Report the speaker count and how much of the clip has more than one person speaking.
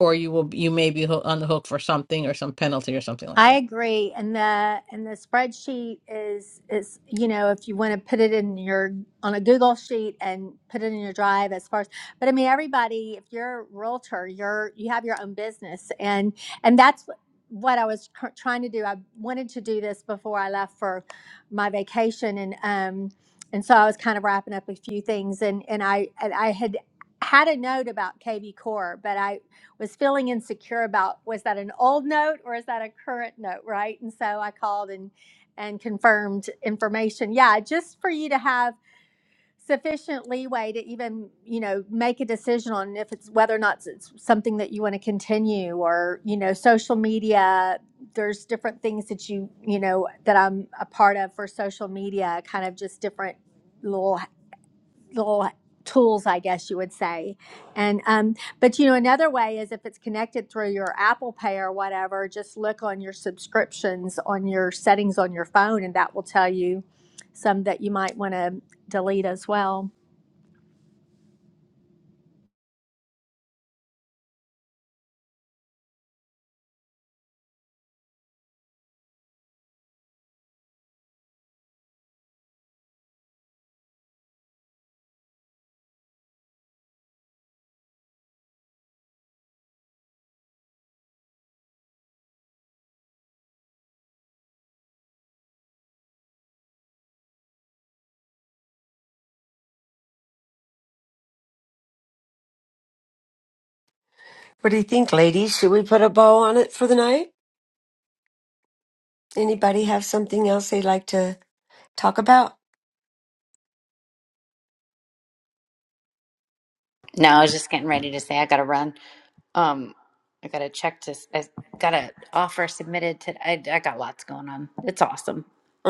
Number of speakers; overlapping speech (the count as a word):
four, under 1%